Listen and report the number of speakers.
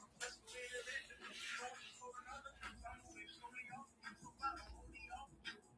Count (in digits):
0